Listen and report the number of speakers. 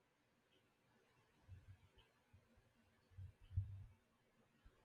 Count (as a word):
zero